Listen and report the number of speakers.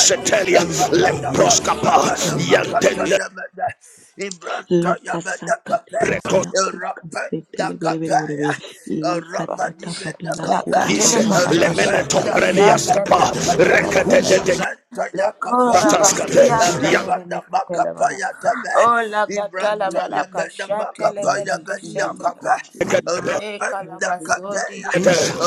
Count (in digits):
4